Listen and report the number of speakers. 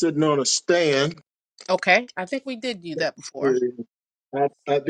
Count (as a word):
two